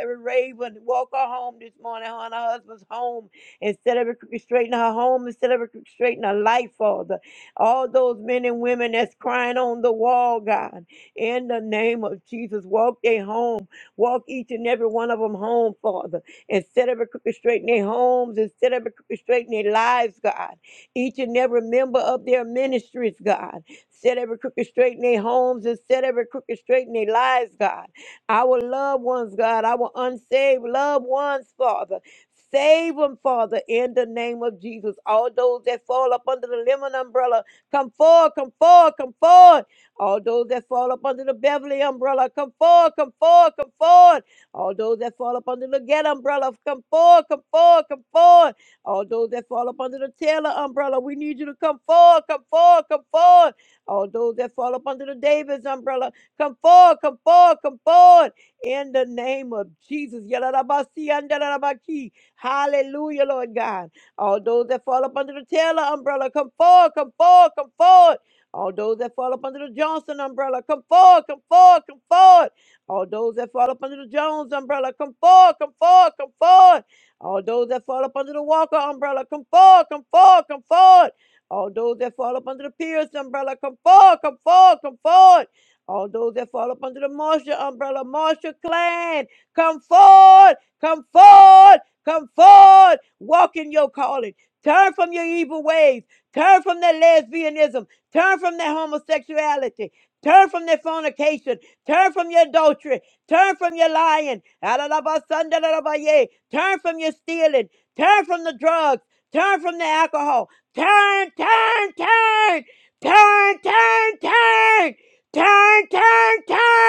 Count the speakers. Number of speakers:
one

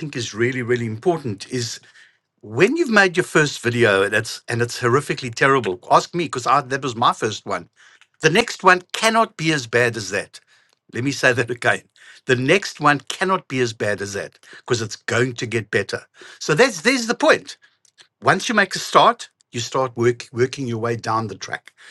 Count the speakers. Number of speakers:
one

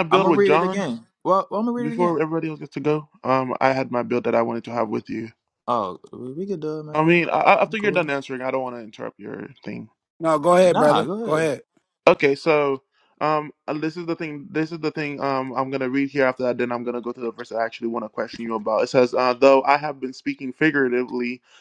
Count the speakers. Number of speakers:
three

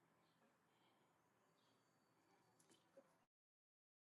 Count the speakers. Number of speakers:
zero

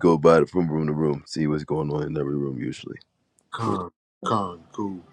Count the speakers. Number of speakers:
two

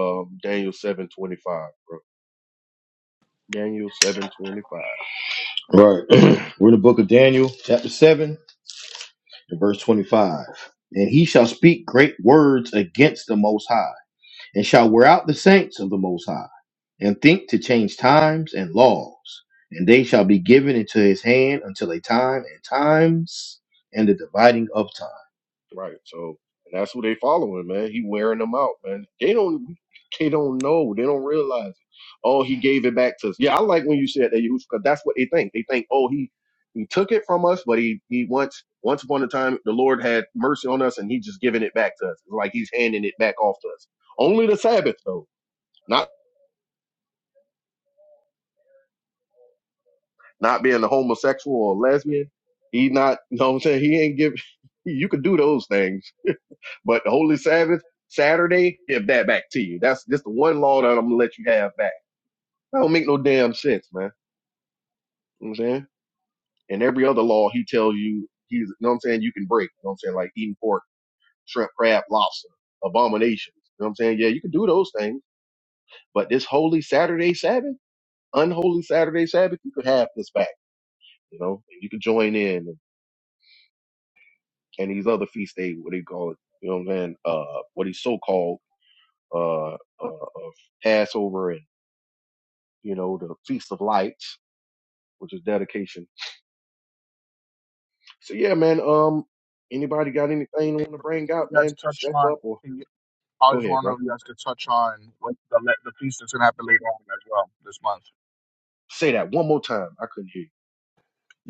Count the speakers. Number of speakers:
three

